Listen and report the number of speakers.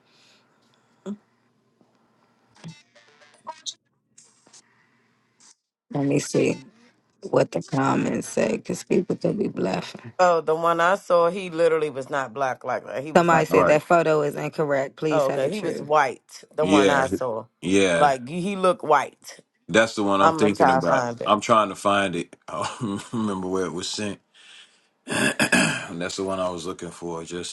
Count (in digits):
3